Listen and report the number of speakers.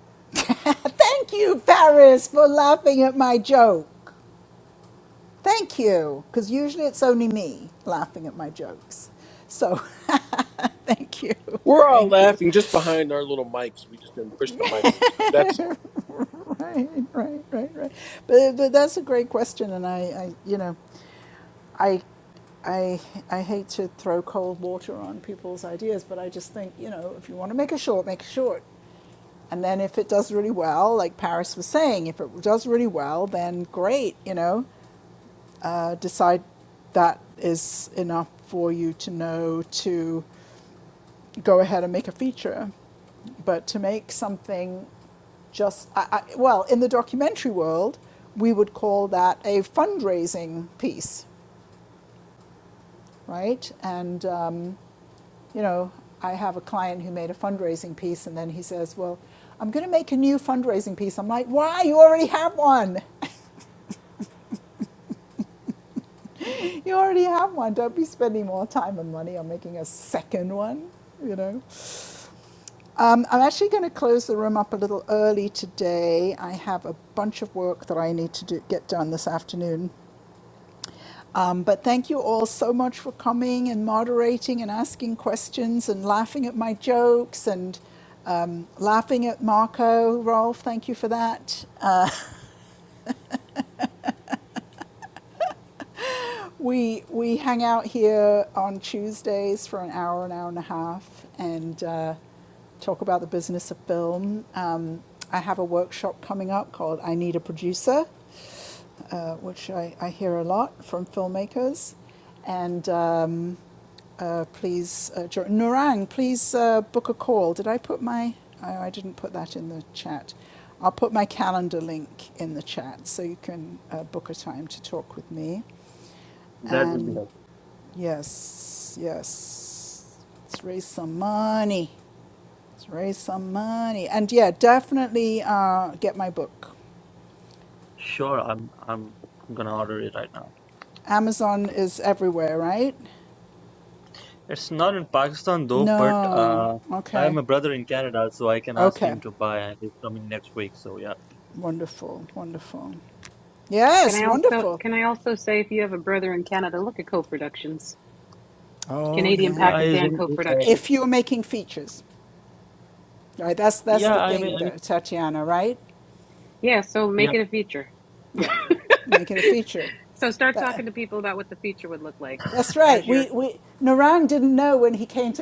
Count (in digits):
4